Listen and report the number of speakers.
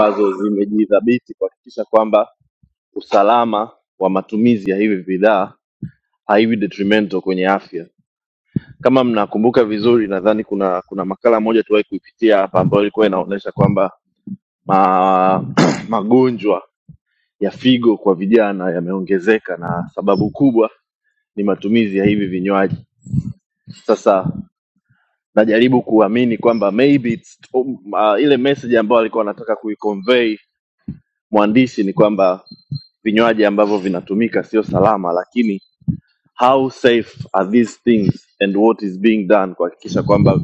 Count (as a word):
one